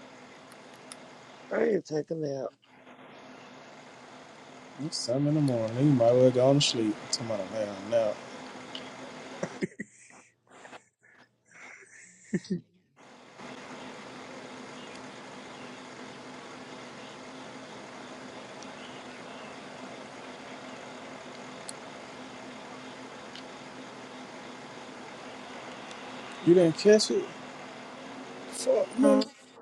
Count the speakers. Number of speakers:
2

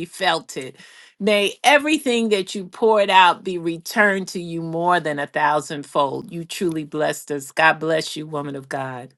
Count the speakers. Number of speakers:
1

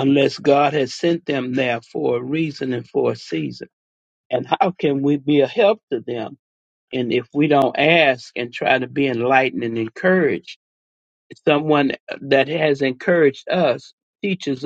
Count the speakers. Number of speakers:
1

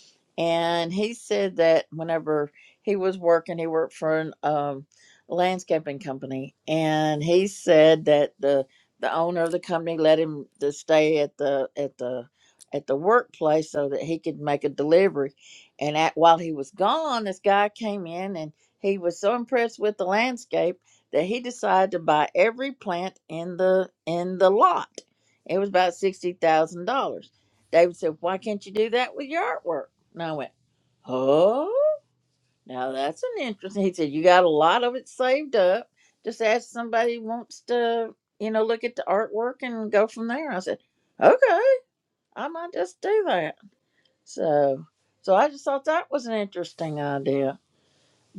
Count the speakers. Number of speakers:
1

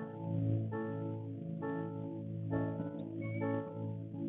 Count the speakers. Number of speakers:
0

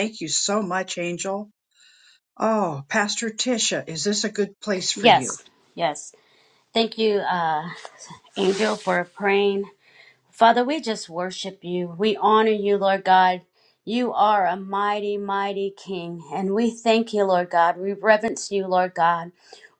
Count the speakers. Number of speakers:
2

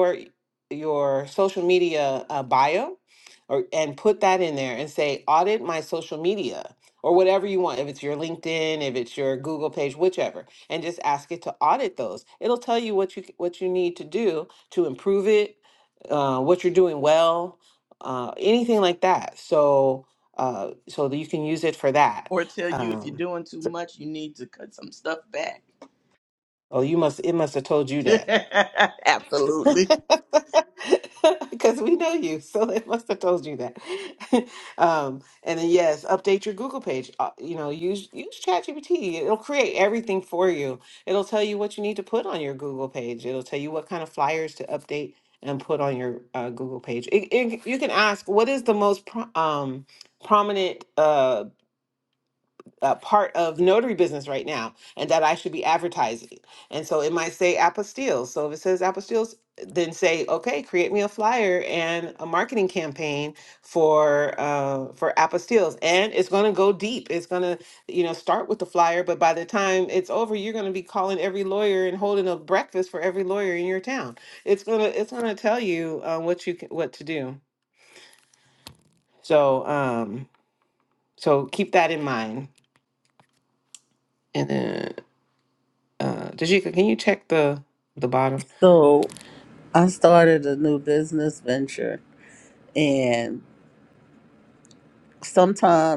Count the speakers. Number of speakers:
3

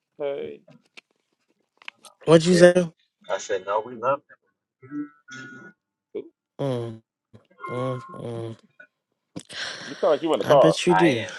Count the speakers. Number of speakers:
3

